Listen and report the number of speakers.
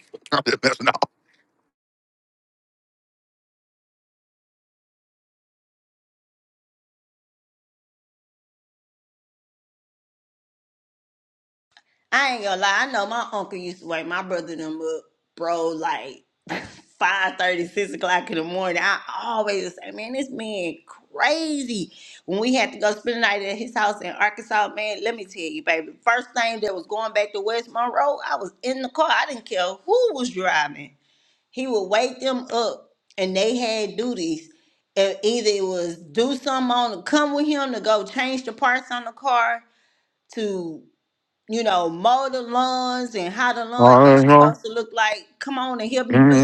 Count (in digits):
2